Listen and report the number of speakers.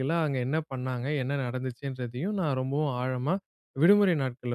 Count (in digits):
1